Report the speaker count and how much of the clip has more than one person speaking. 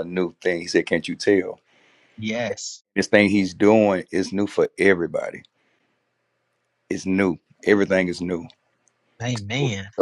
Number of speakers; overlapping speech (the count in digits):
2, about 3%